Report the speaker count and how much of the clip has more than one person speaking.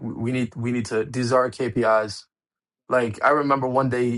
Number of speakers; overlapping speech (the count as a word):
one, no overlap